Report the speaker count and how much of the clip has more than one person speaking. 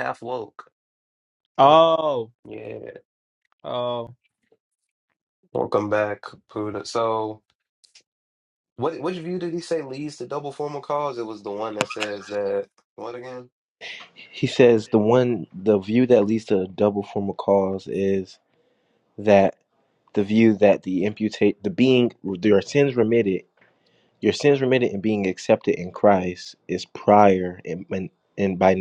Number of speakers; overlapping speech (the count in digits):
3, no overlap